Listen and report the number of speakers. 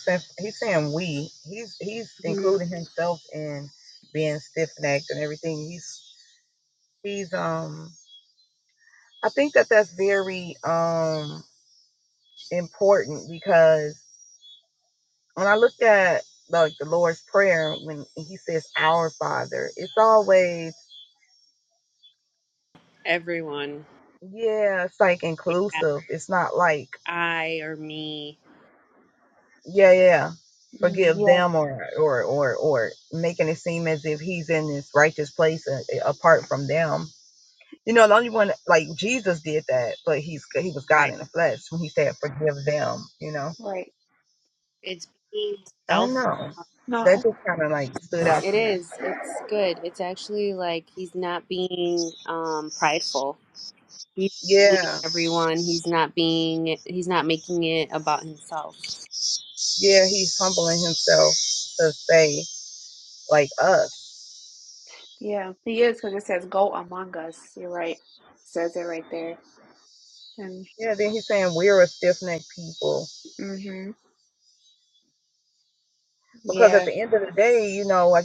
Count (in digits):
3